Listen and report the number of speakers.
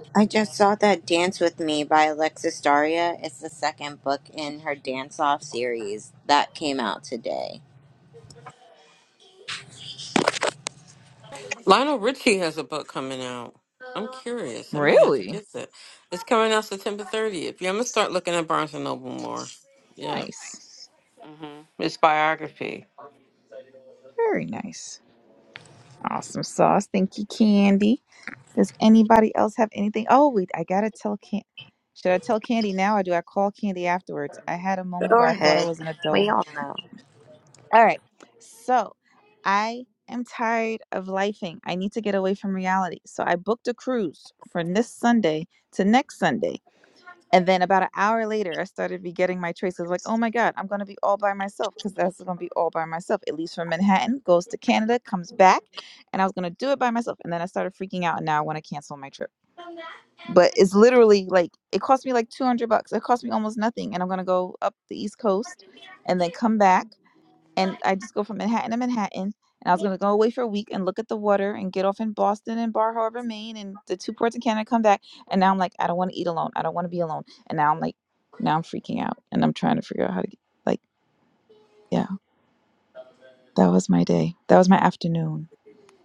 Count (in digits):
3